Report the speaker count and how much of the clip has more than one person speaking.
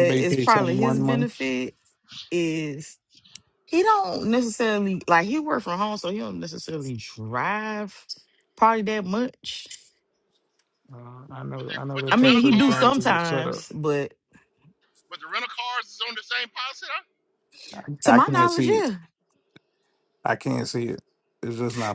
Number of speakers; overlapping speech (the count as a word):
three, about 19%